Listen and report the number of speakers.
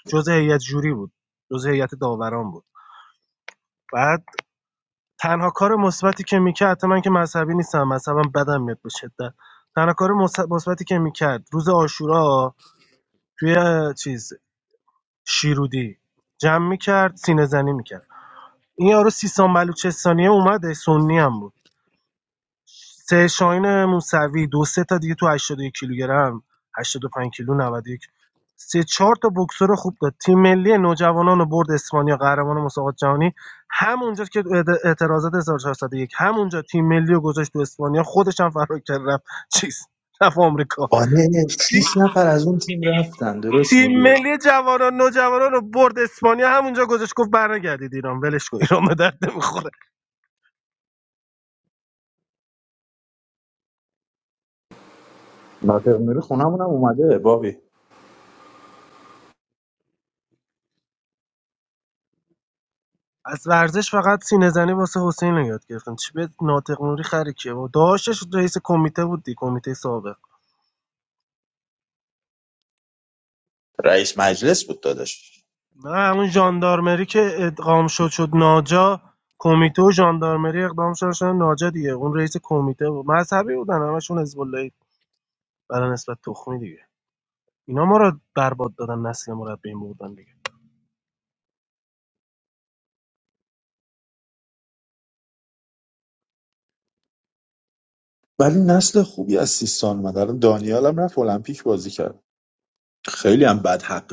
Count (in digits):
2